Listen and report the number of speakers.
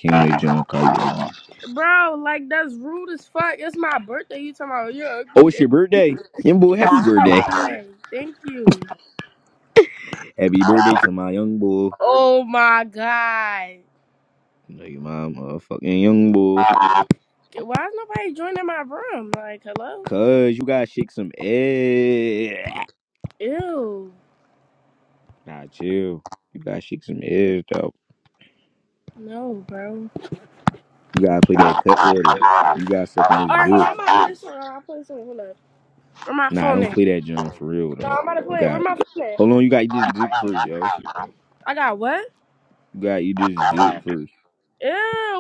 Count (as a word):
two